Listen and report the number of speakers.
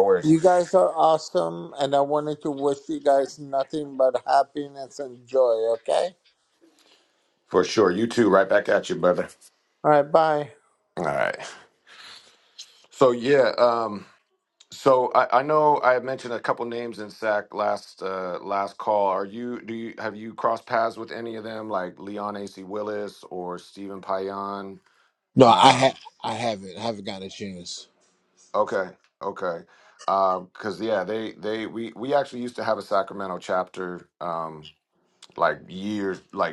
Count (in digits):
3